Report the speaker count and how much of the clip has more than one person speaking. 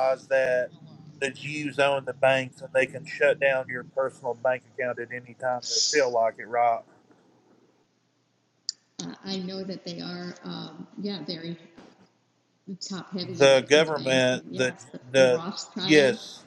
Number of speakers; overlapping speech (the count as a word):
two, about 12%